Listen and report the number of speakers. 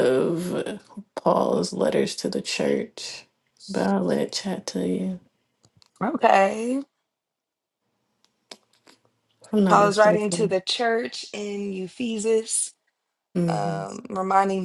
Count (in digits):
2